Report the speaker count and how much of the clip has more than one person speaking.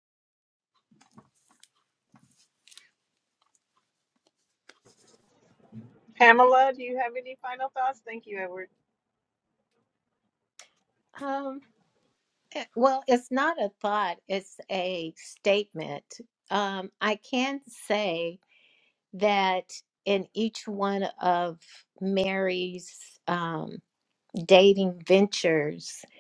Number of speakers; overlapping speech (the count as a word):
two, no overlap